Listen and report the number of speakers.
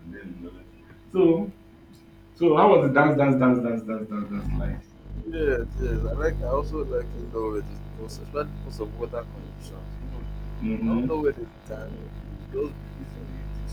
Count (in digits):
2